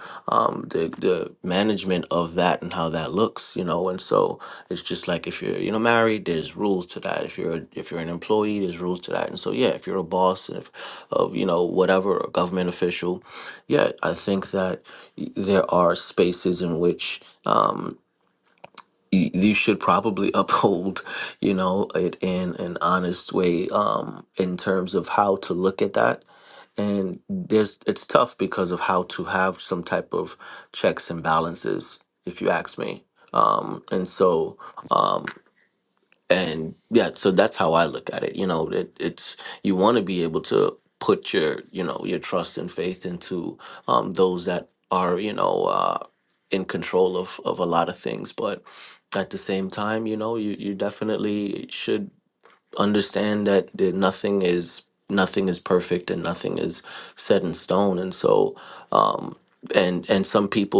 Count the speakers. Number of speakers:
one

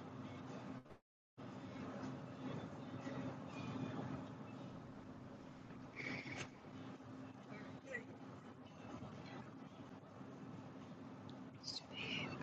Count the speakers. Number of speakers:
zero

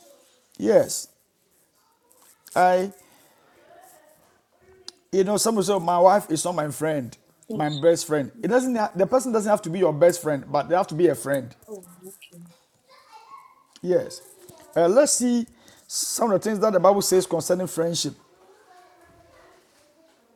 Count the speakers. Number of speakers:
two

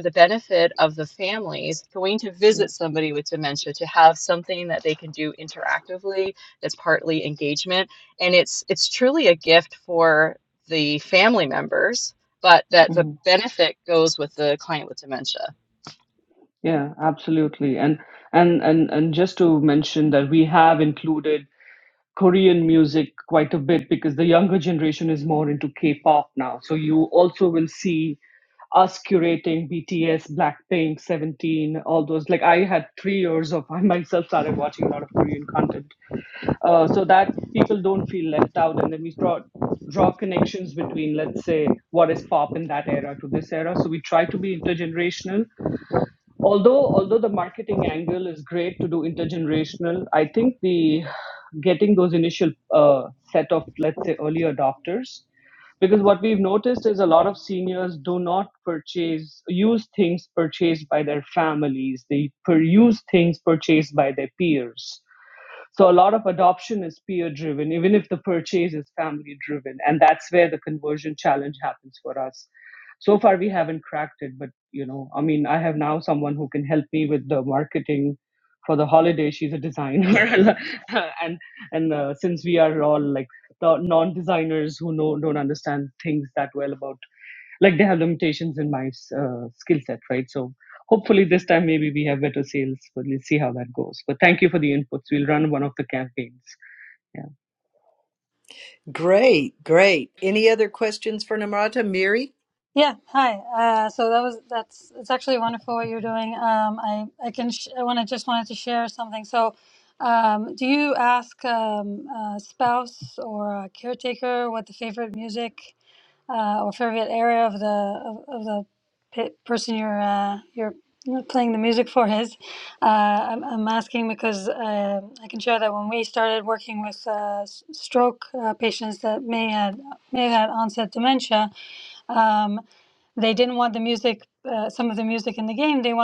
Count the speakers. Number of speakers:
four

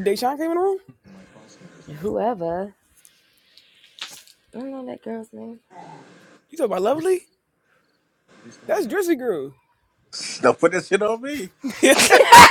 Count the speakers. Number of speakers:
three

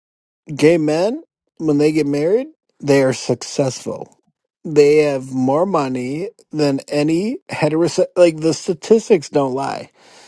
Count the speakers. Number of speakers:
one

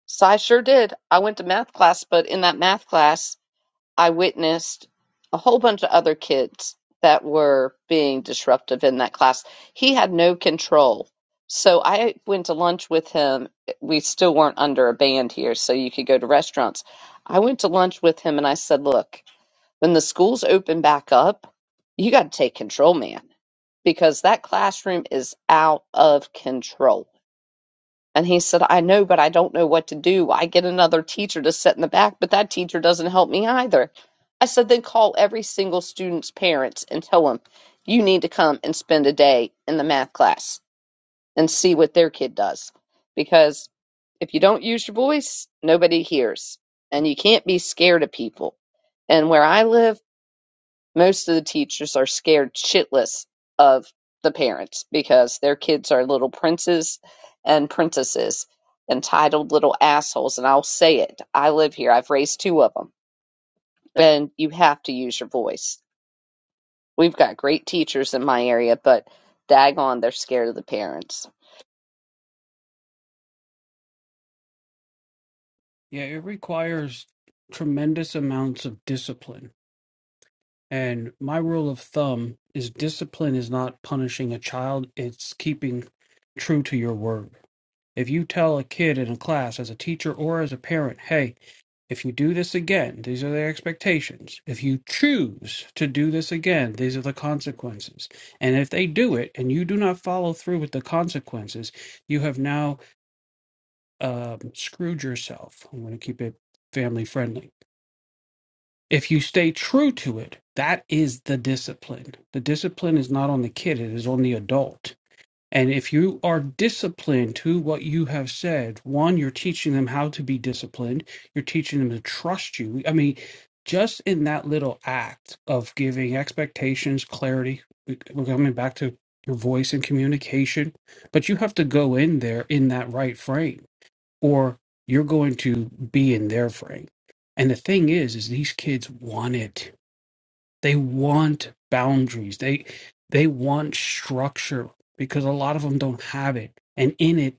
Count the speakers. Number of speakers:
two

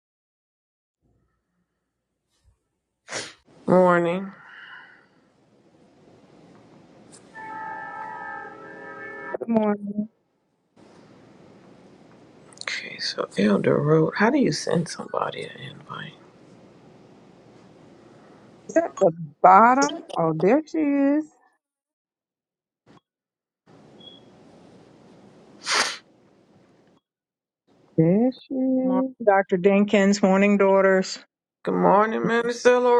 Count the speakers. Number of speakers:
three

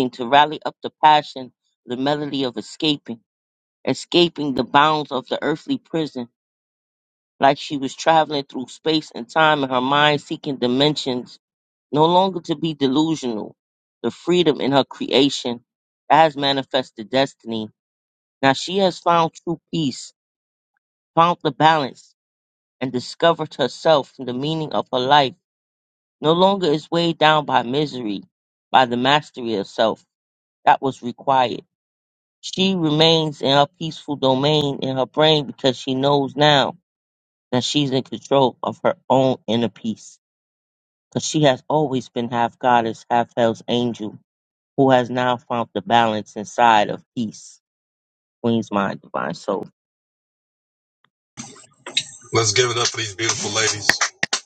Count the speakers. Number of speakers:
two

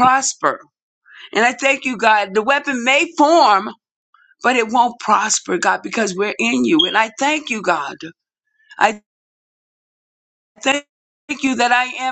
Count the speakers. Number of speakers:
one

